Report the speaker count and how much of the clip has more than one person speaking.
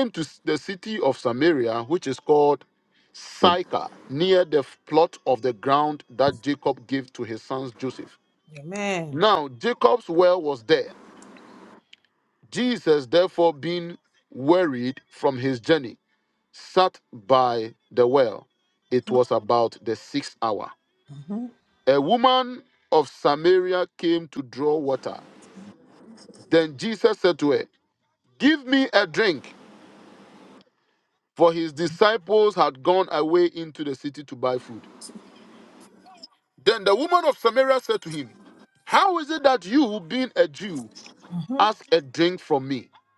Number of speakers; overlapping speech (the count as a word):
two, under 1%